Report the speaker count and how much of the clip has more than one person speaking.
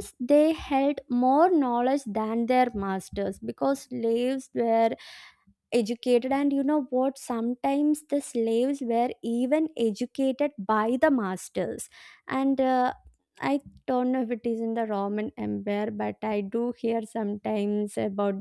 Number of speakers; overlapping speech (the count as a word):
one, no overlap